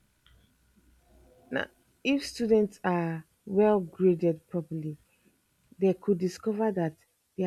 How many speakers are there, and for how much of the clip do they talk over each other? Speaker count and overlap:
1, no overlap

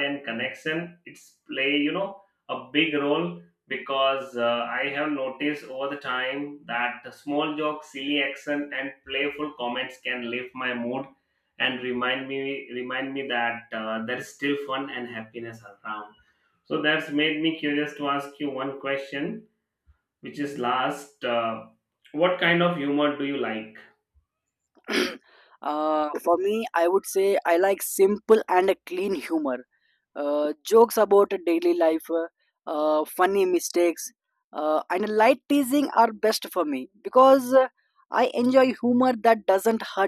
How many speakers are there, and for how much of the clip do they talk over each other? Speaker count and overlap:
2, no overlap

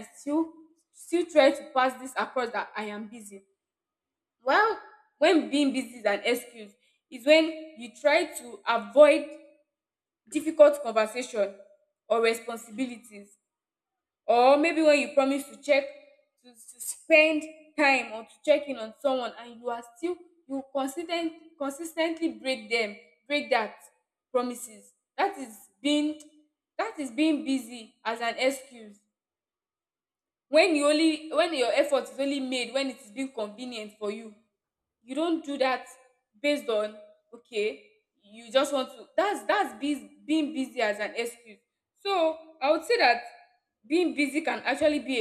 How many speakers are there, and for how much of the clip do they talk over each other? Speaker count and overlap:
1, no overlap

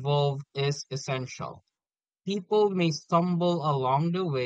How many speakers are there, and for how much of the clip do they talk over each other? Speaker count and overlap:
1, no overlap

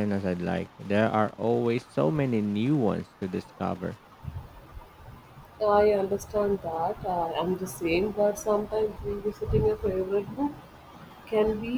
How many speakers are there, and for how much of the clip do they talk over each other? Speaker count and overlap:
2, no overlap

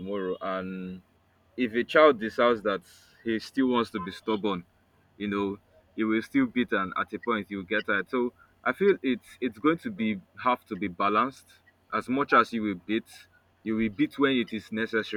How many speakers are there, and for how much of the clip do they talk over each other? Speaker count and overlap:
1, no overlap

